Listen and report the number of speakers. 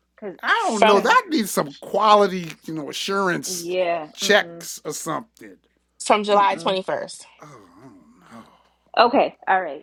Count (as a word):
three